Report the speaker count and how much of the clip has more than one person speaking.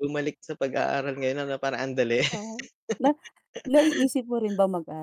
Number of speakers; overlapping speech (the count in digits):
2, no overlap